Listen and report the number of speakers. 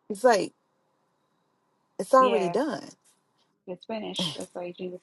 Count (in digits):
2